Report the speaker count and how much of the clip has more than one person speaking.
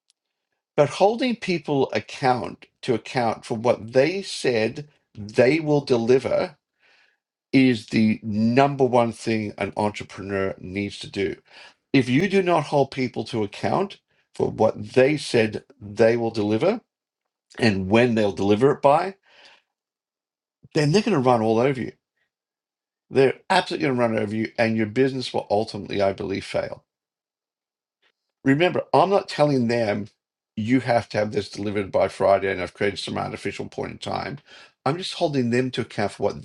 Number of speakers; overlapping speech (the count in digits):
1, no overlap